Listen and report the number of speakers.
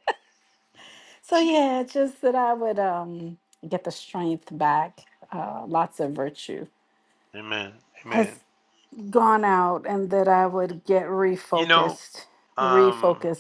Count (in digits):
2